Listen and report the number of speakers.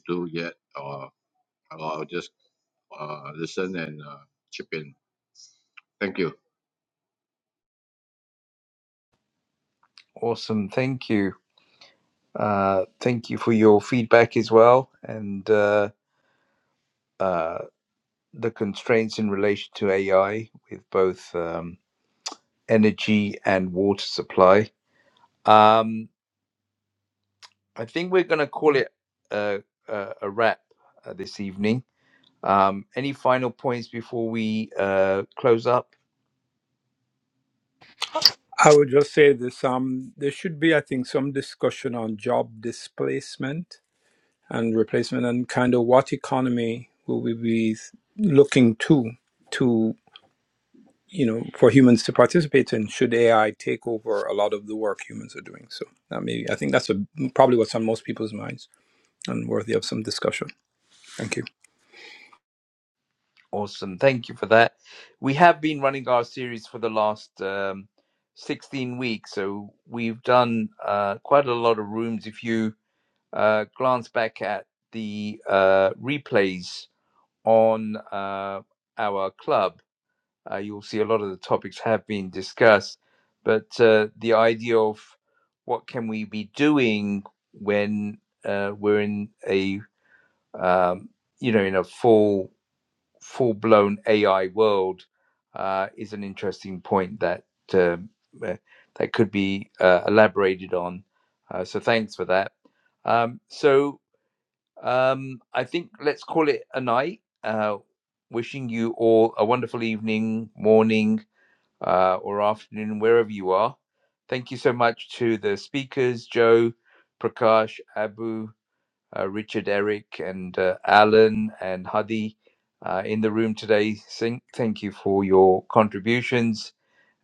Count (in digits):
3